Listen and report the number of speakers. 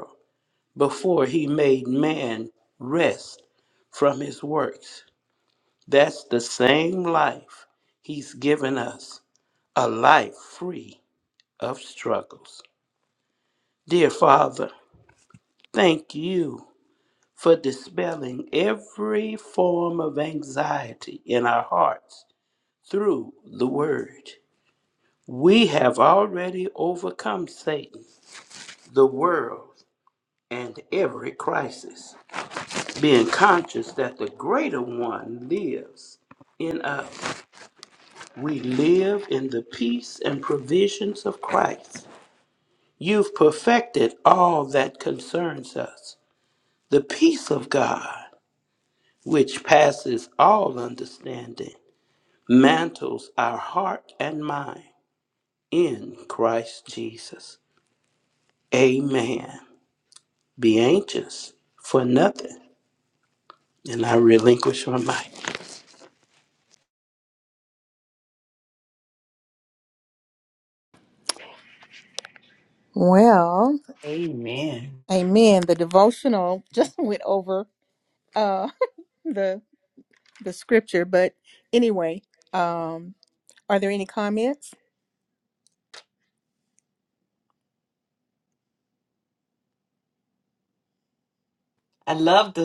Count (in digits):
3